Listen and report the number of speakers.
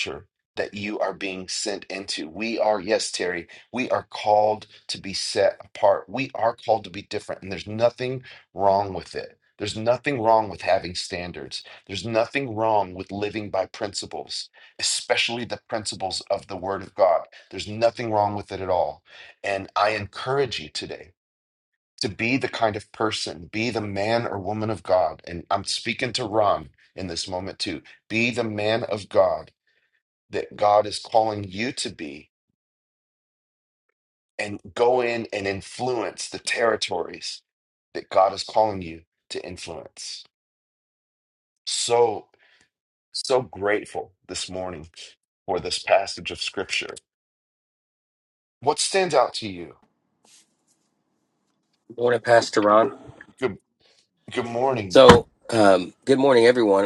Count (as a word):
two